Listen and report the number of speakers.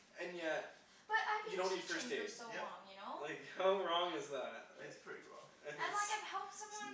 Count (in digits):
3